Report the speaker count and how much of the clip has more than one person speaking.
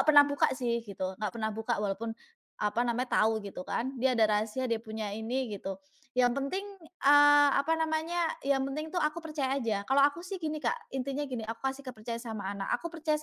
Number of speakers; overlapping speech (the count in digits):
1, no overlap